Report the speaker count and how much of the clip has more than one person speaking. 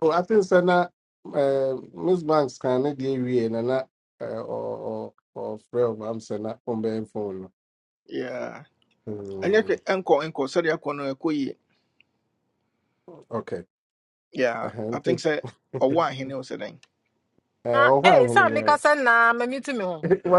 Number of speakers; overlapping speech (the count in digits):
3, about 7%